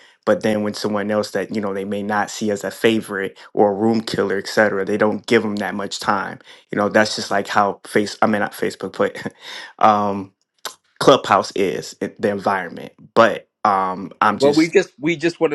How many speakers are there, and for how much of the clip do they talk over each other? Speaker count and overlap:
2, about 2%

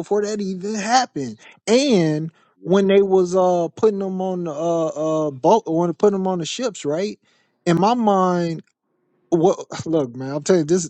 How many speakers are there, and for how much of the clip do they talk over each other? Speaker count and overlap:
1, no overlap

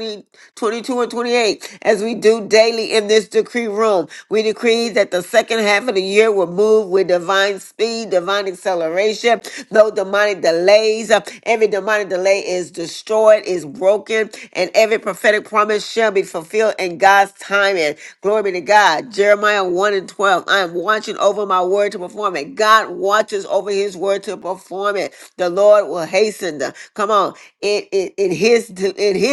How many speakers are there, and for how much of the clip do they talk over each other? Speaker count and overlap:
1, no overlap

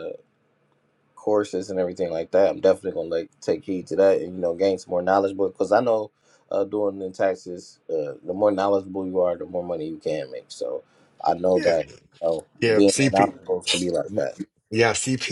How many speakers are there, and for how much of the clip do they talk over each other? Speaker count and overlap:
2, about 6%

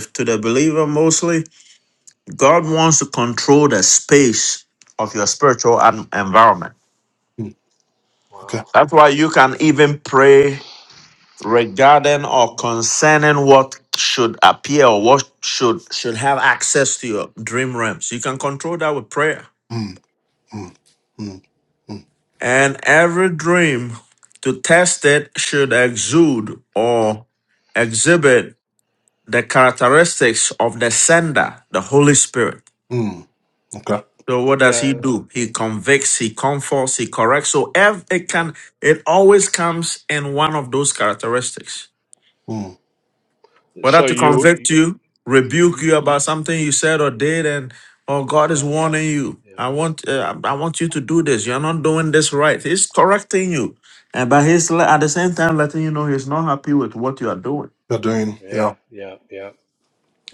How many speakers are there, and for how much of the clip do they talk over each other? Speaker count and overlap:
3, about 4%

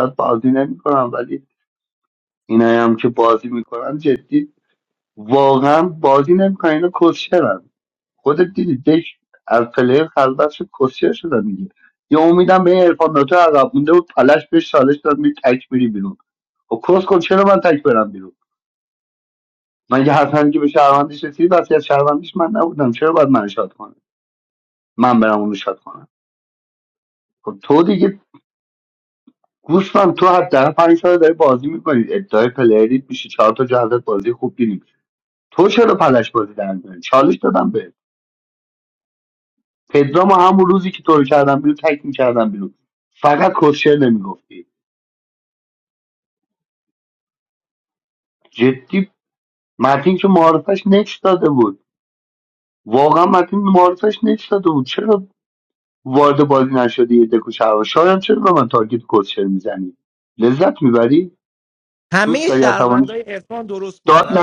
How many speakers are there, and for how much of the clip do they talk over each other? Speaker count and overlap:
2, about 2%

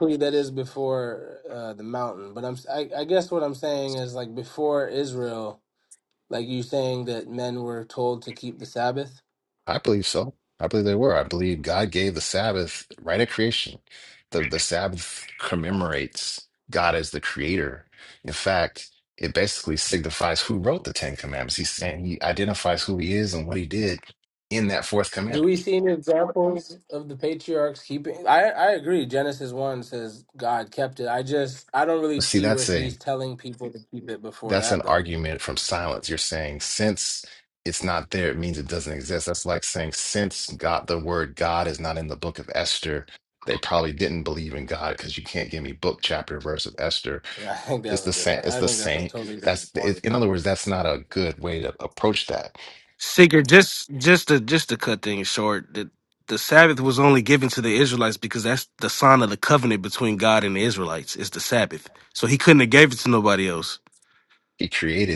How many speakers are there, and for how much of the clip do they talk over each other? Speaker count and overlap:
3, about 6%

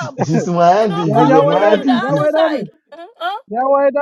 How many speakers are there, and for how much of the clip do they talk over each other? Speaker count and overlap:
3, about 51%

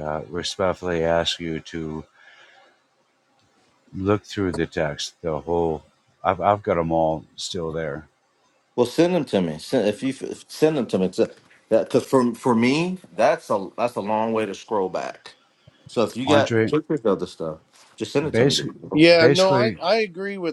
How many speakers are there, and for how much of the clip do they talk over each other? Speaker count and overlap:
3, about 8%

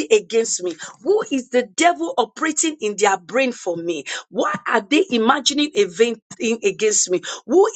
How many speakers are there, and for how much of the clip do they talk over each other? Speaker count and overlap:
1, no overlap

